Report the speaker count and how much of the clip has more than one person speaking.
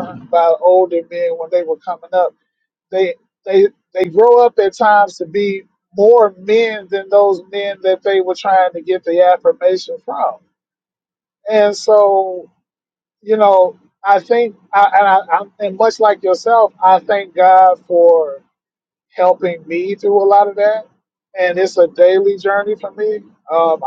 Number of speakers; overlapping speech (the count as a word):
one, no overlap